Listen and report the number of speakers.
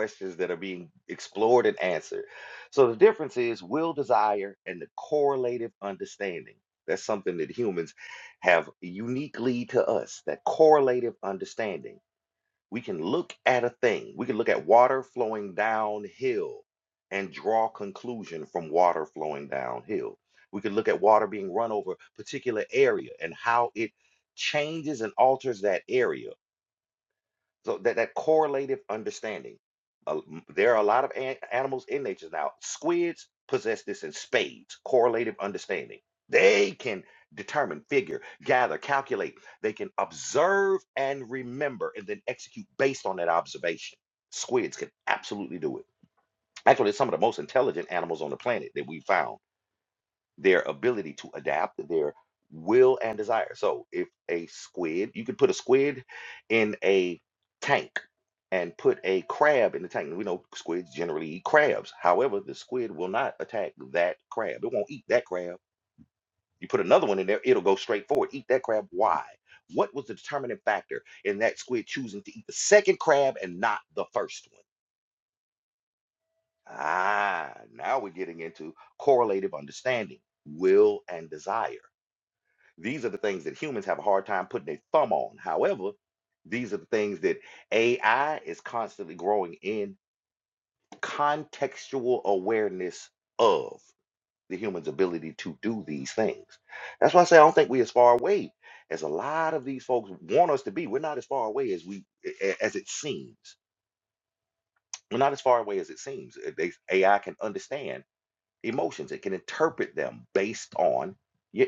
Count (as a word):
one